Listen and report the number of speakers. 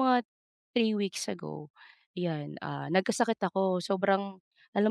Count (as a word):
one